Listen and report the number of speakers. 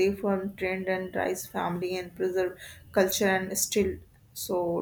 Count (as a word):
one